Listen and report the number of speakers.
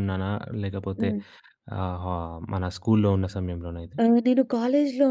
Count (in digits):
2